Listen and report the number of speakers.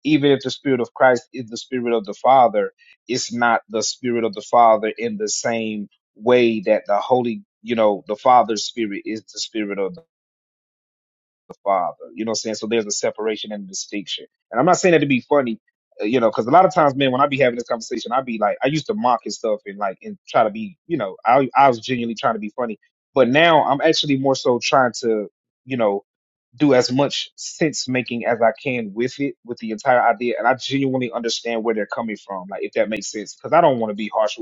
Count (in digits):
1